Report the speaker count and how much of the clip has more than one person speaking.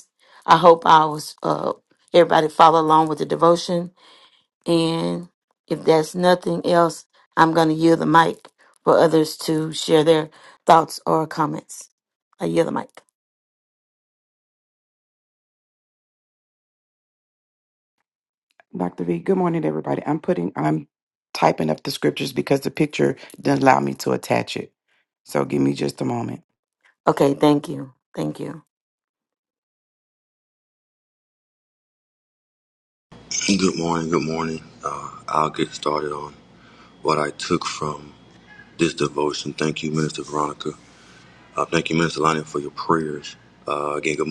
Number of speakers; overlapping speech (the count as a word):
three, no overlap